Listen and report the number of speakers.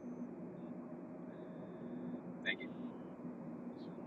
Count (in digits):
0